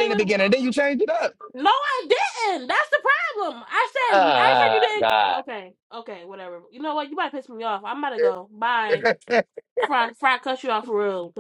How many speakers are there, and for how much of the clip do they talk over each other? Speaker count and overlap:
2, about 14%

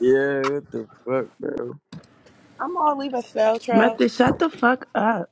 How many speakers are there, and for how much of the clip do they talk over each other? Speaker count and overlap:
3, about 5%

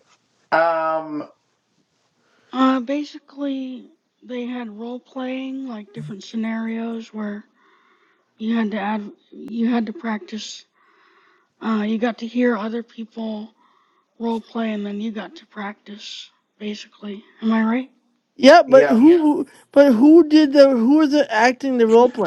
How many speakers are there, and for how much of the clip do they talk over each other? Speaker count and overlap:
3, about 3%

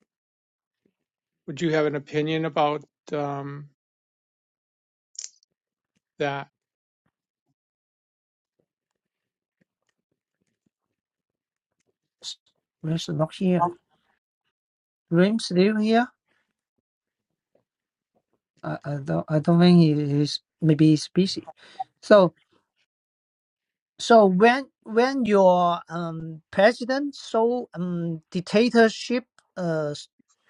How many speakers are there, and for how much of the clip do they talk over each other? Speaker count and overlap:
2, no overlap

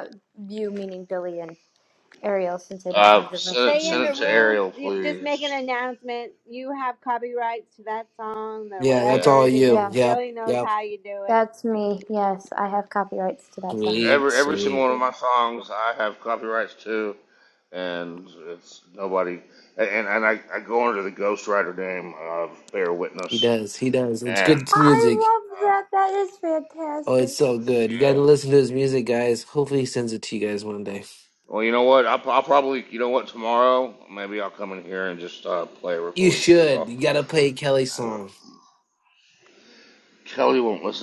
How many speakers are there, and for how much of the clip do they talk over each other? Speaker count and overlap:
4, about 21%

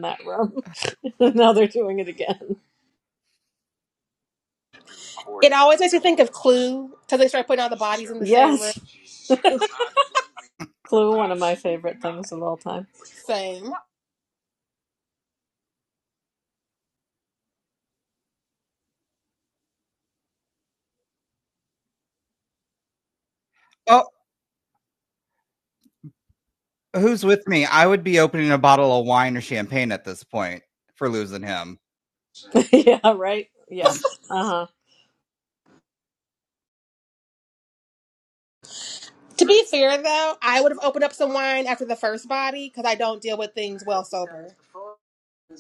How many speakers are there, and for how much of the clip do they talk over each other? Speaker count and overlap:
3, about 1%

